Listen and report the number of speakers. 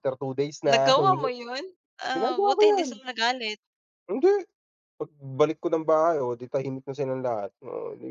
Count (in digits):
2